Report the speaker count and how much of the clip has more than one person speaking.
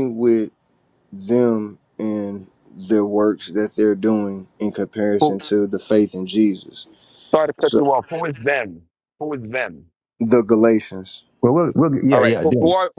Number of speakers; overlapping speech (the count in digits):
3, about 8%